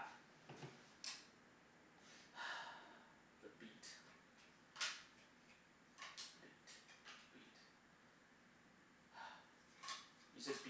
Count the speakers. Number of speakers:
one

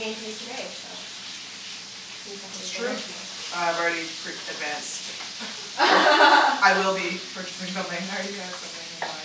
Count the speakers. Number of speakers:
two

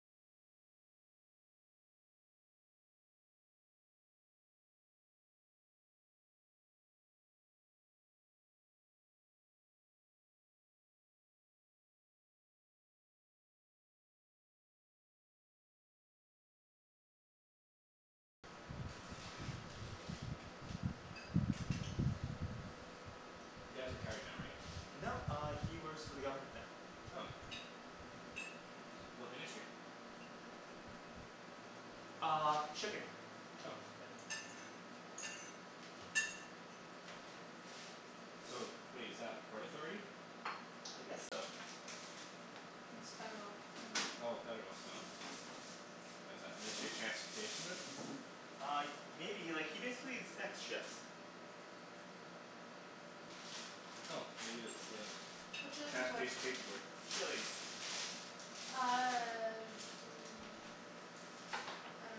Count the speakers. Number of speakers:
three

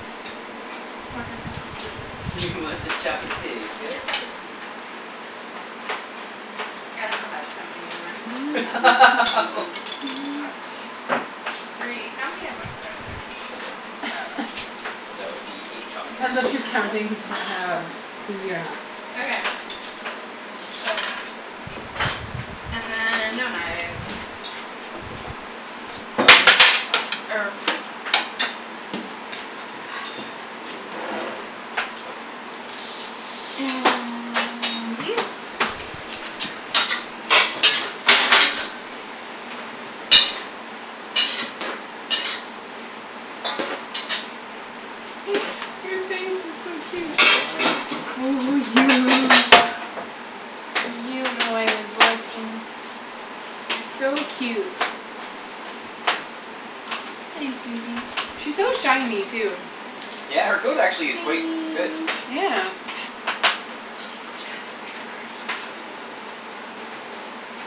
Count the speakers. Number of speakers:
three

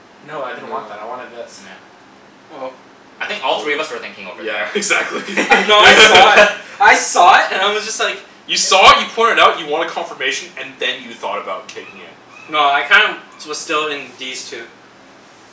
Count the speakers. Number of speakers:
four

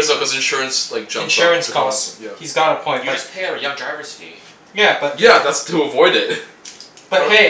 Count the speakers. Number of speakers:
three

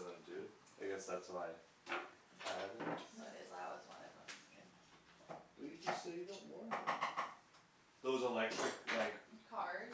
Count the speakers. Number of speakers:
two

